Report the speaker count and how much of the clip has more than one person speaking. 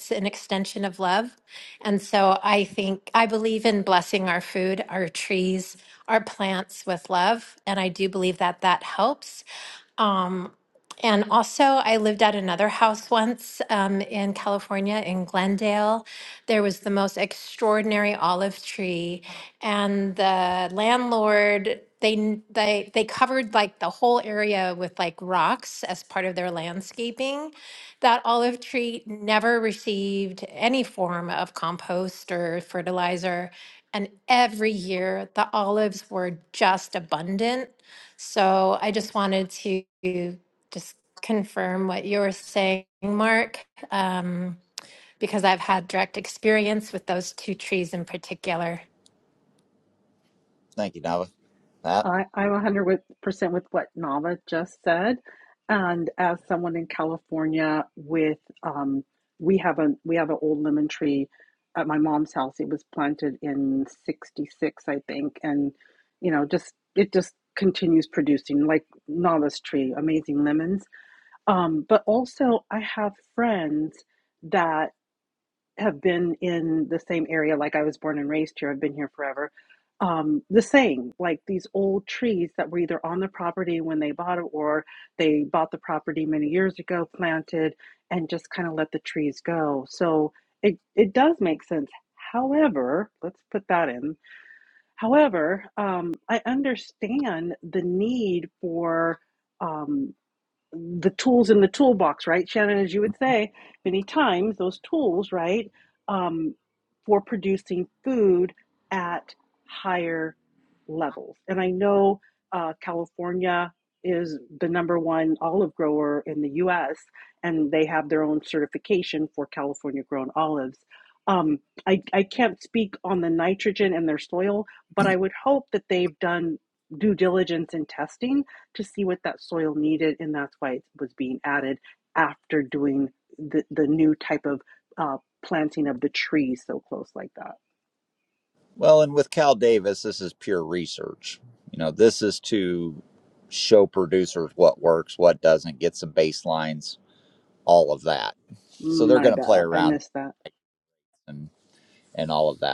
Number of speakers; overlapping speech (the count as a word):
three, about 1%